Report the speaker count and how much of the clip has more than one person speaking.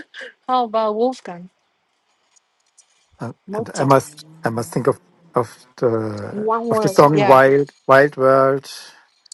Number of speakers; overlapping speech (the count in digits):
2, about 16%